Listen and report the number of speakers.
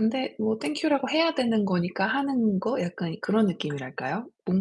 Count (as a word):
one